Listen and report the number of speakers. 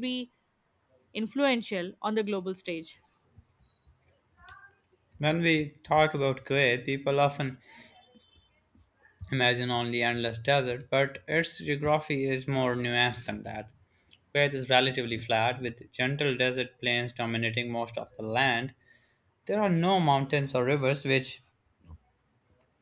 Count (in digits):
2